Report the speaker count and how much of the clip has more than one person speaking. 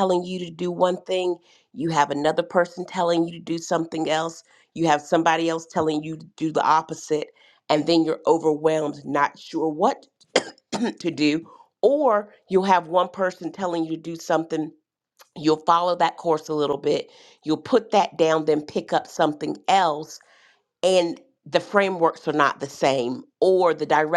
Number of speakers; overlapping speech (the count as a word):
one, no overlap